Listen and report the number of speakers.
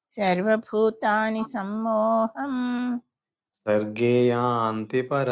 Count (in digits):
2